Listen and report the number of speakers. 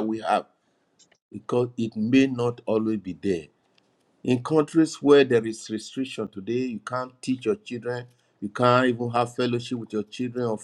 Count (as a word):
one